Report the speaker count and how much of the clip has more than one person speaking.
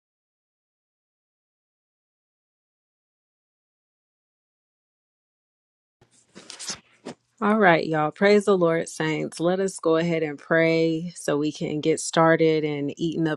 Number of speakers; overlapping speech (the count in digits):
1, no overlap